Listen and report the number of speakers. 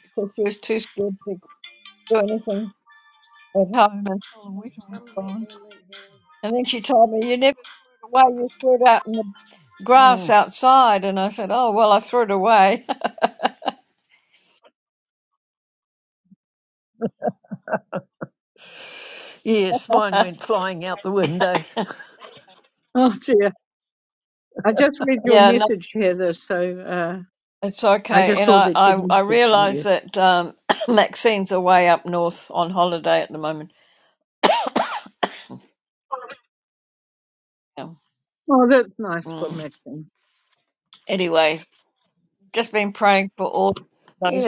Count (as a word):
four